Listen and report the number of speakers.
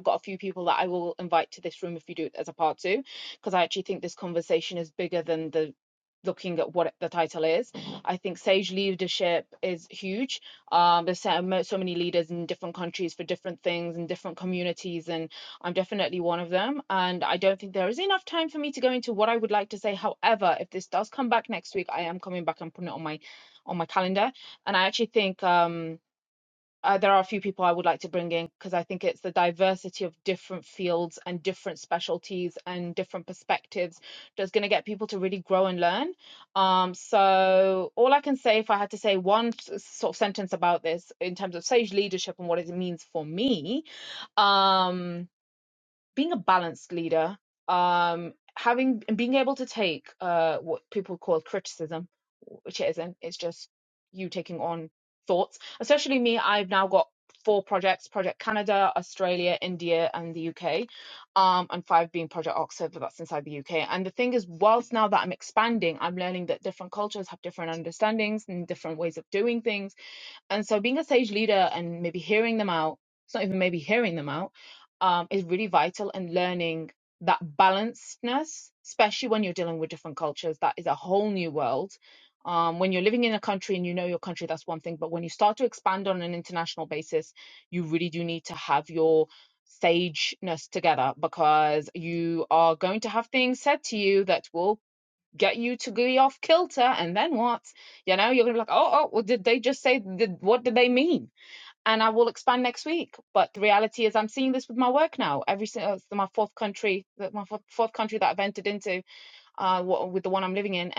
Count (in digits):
1